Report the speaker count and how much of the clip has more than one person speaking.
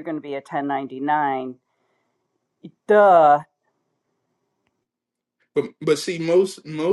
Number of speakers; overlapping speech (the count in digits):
2, no overlap